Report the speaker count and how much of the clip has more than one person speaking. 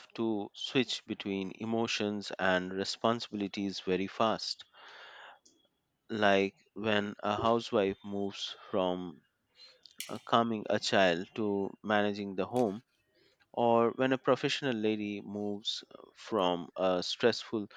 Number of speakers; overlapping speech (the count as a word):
one, no overlap